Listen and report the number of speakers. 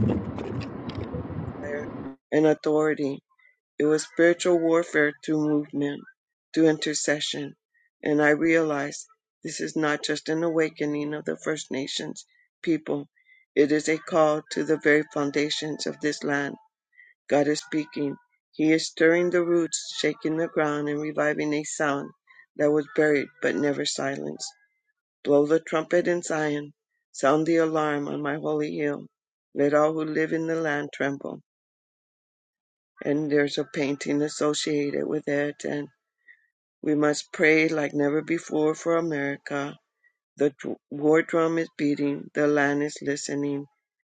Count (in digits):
1